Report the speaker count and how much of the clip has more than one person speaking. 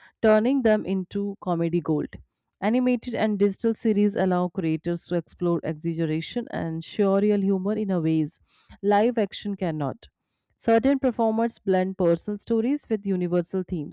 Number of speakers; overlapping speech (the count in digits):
1, no overlap